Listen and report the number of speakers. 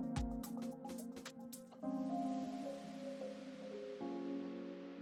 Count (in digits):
0